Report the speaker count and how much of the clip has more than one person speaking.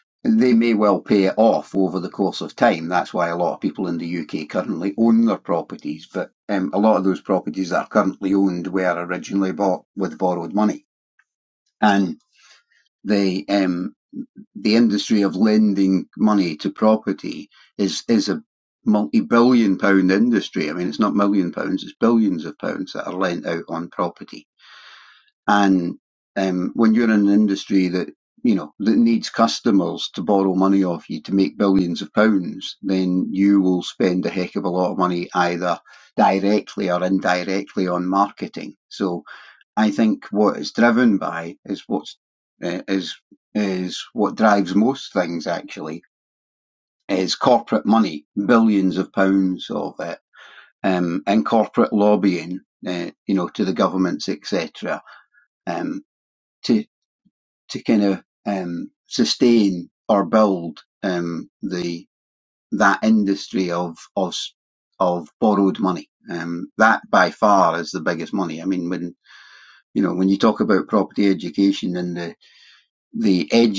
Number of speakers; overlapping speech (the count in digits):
1, no overlap